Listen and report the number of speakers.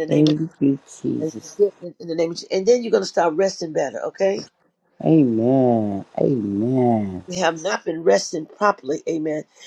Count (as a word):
two